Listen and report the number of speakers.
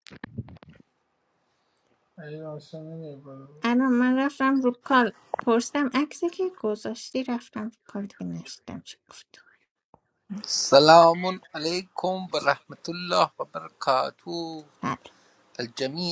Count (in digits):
3